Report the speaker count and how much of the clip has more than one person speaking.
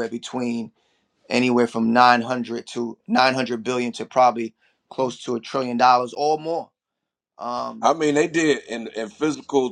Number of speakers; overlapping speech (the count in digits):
2, under 1%